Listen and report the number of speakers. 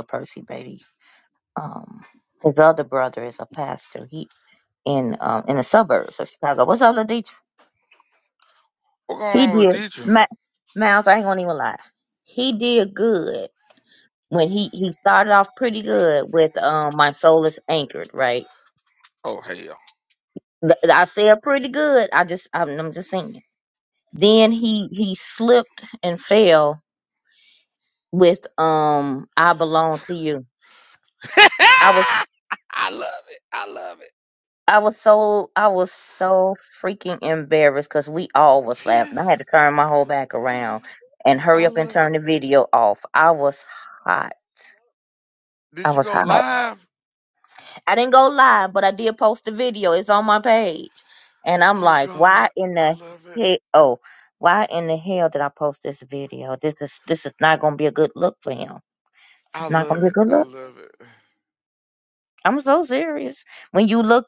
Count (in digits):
2